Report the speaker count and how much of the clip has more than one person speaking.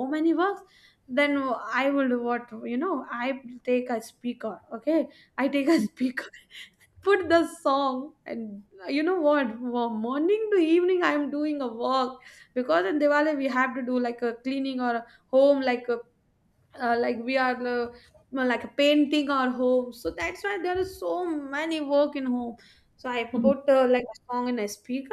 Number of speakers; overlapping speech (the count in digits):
1, no overlap